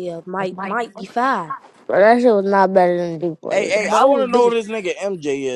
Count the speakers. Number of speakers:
3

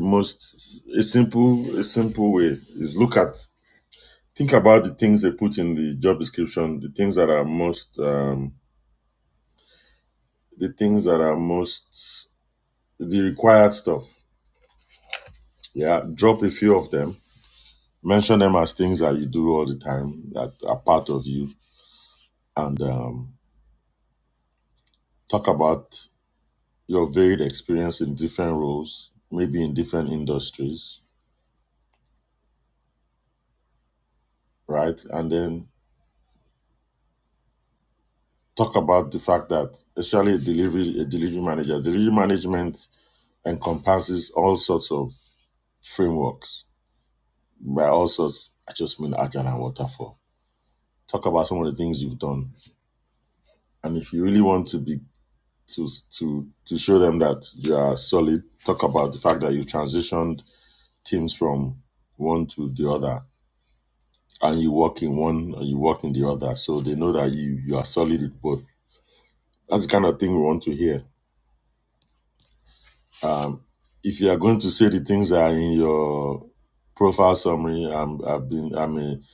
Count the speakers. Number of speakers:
1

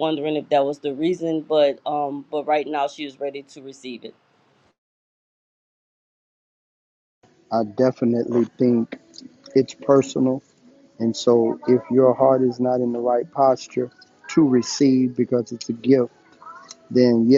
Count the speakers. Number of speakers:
2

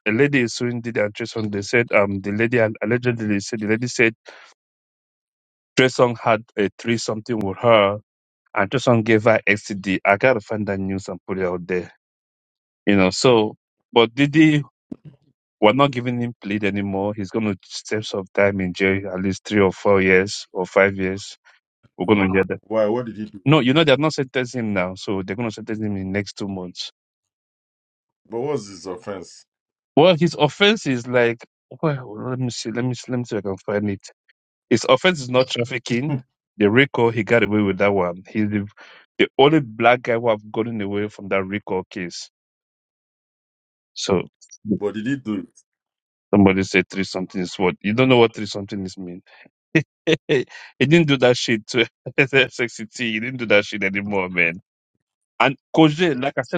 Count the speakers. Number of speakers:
2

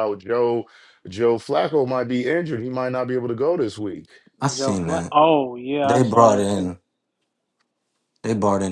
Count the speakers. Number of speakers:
3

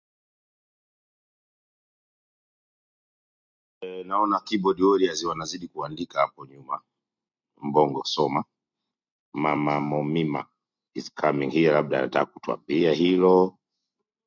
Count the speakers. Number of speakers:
1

